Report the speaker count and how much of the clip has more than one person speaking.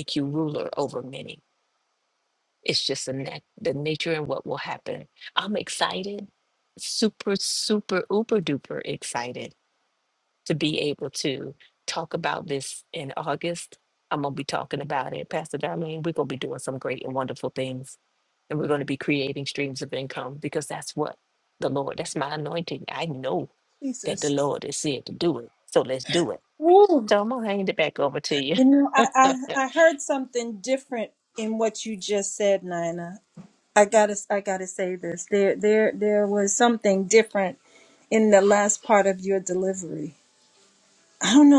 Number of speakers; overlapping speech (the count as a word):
two, under 1%